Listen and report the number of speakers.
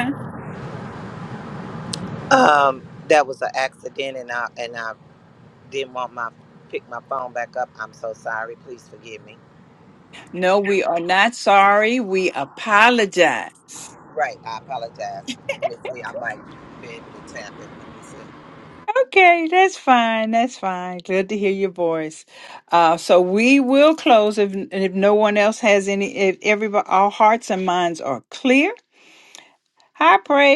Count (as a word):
two